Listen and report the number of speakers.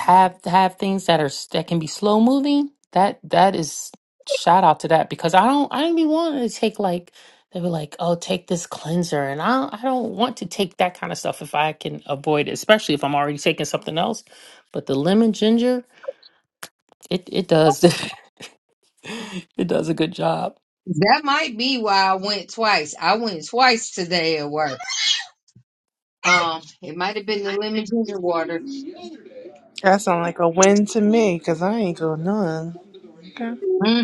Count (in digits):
3